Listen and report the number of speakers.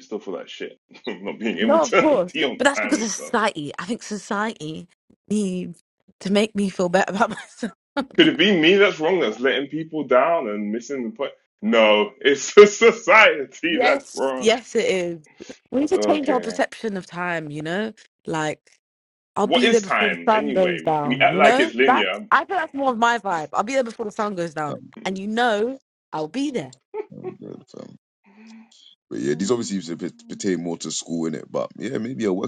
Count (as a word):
three